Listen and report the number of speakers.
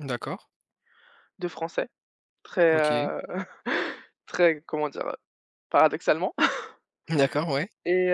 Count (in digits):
2